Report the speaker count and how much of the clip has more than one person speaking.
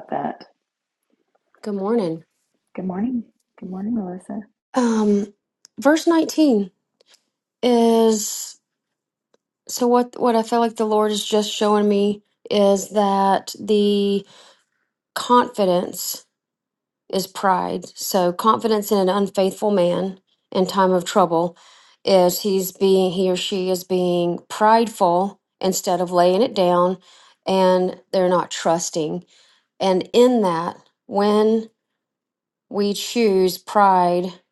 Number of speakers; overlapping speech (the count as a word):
two, no overlap